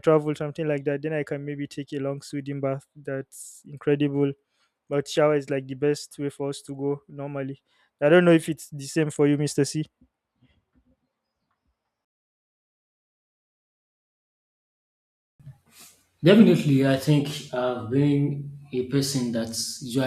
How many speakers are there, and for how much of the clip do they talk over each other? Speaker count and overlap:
2, no overlap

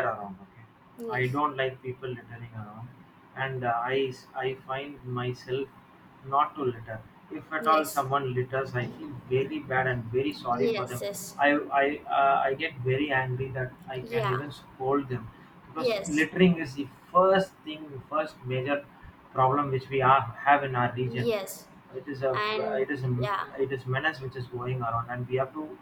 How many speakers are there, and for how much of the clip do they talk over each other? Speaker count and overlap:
2, about 8%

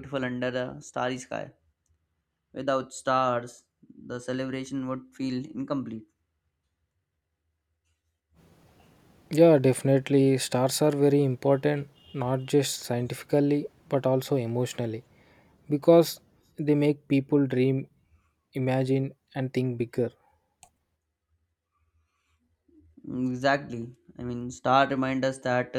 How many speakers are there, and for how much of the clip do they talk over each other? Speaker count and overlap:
2, no overlap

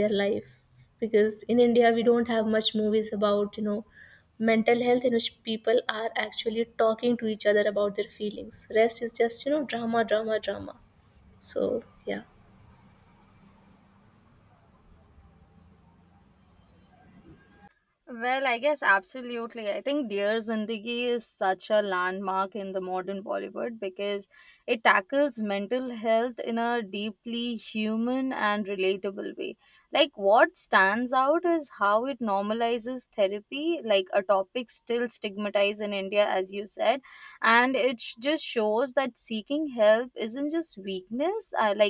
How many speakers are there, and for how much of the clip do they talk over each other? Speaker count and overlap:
2, no overlap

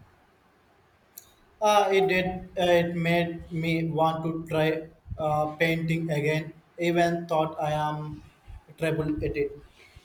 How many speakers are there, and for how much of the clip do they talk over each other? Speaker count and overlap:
1, no overlap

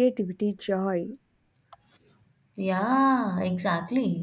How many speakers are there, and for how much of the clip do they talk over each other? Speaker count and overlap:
2, no overlap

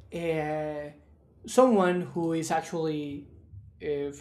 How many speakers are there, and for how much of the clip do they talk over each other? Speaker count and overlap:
1, no overlap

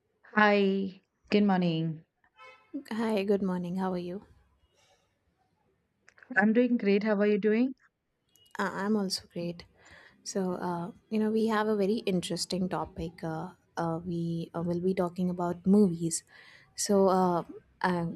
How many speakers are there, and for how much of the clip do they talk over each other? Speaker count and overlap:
2, no overlap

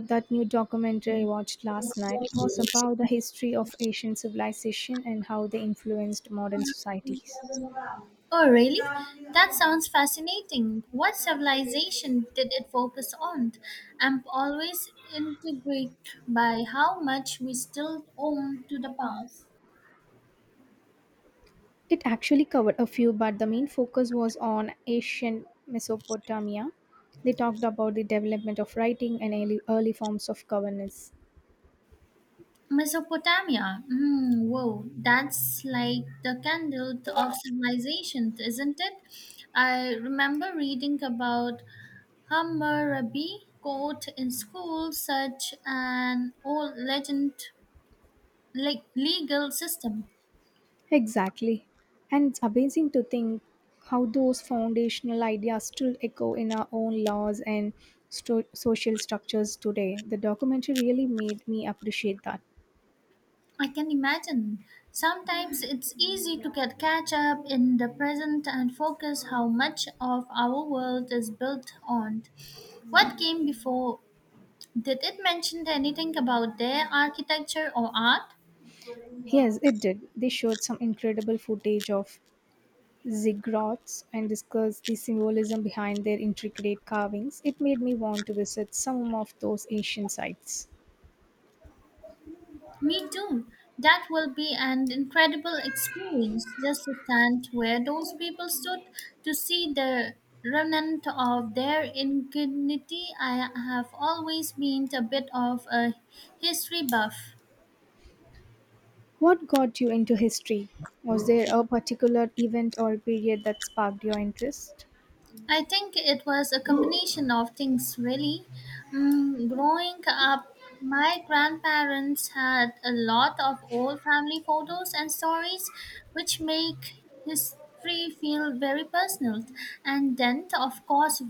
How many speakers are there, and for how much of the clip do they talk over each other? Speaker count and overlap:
2, no overlap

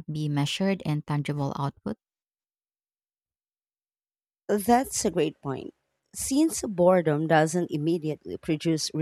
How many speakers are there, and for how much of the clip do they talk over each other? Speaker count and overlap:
2, no overlap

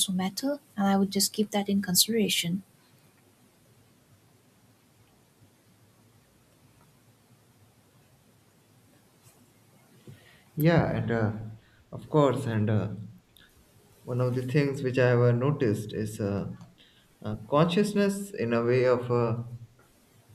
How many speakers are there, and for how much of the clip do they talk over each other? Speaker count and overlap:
2, no overlap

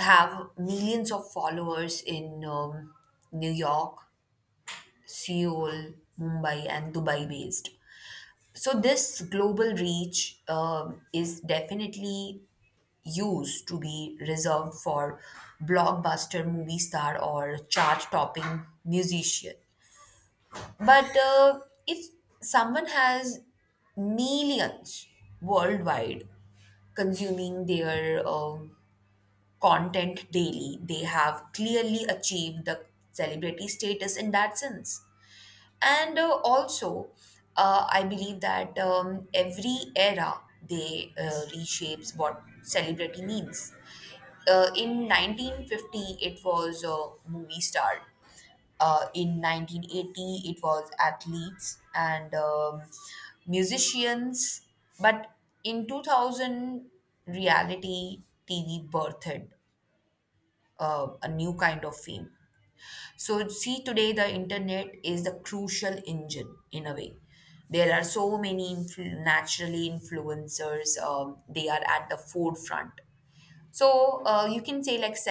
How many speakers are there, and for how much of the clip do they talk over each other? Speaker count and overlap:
1, no overlap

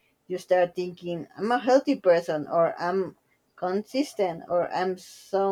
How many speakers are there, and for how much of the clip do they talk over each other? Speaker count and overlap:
1, no overlap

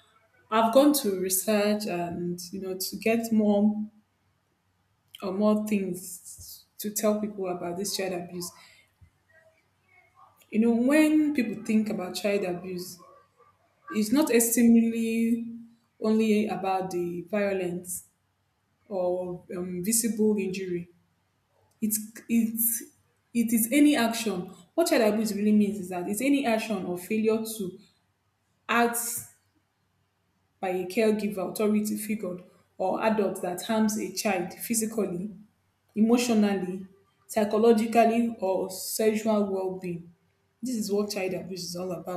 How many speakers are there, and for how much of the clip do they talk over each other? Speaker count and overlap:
1, no overlap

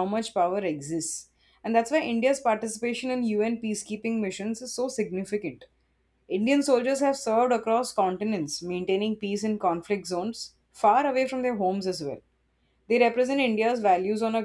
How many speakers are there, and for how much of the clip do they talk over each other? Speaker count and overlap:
1, no overlap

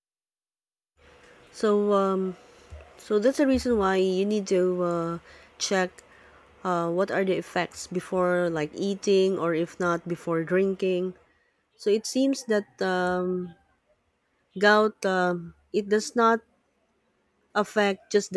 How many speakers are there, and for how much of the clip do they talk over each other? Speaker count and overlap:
1, no overlap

